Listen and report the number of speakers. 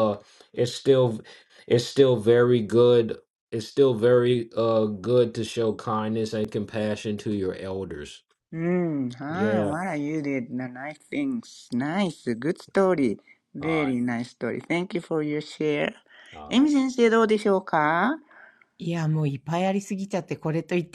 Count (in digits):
3